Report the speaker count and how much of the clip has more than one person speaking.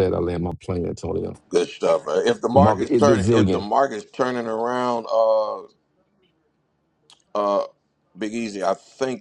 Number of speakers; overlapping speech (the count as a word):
two, about 12%